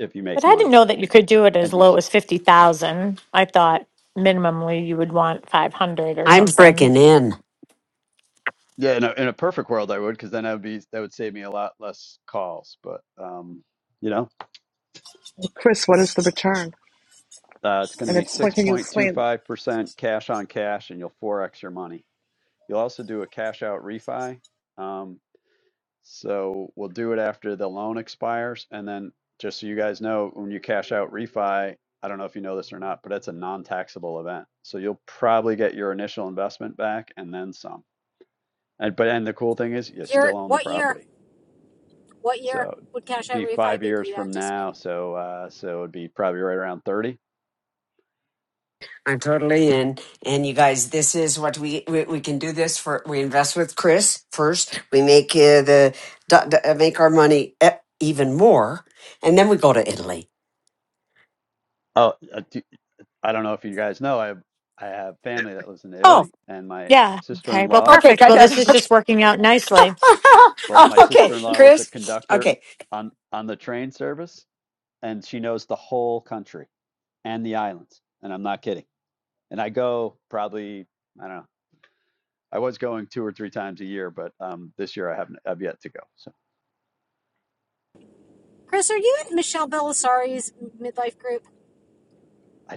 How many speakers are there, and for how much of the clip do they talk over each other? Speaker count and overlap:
5, about 9%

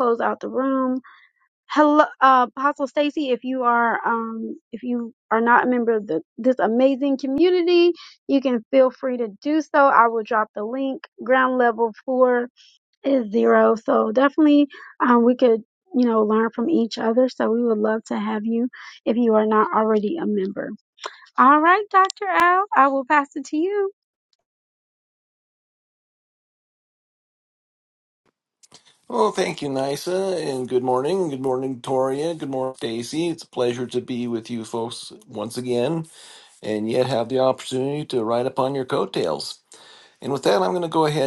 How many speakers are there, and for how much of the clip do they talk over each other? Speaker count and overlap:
2, no overlap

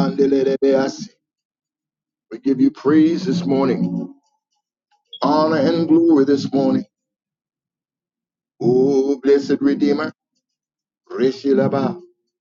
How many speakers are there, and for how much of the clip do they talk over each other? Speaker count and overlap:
1, no overlap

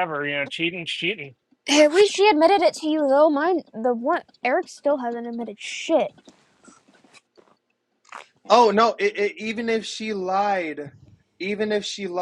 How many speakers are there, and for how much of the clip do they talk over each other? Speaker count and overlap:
3, no overlap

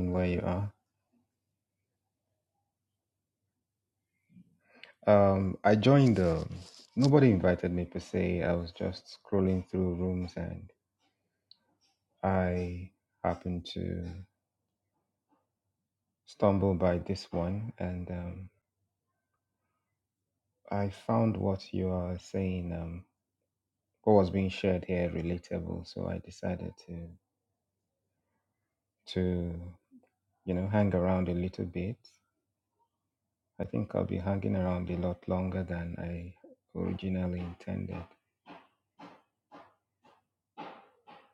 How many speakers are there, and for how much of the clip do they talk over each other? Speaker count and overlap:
1, no overlap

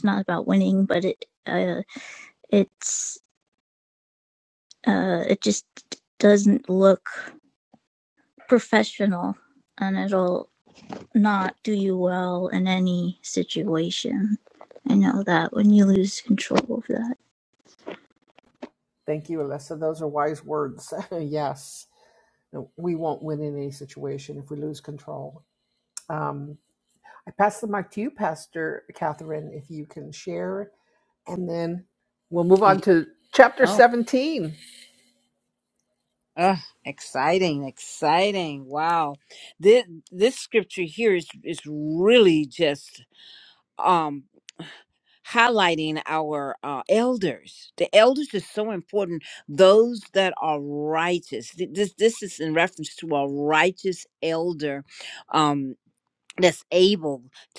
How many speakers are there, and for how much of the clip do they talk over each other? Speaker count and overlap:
3, about 1%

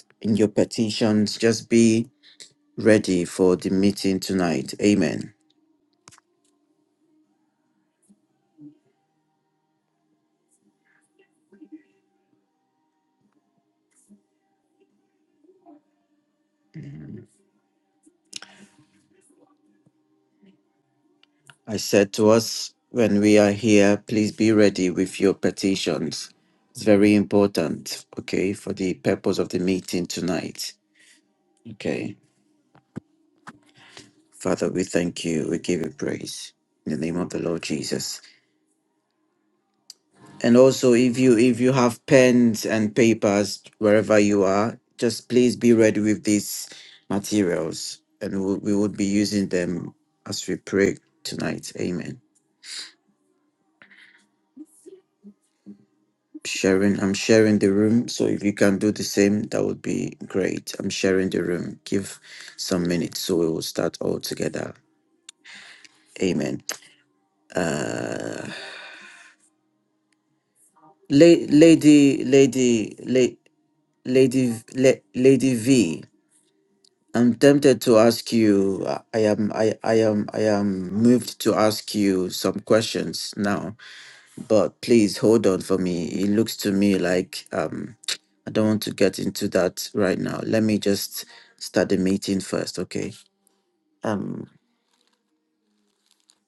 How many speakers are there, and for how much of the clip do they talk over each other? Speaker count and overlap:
1, no overlap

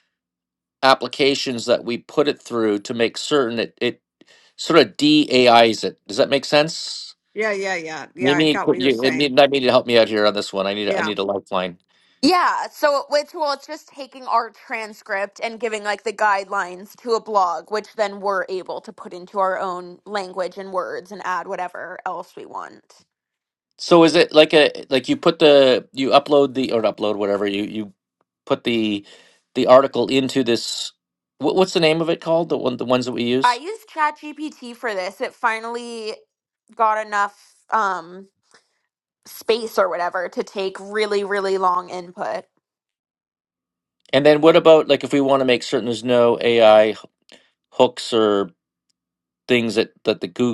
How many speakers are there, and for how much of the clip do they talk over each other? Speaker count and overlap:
3, about 3%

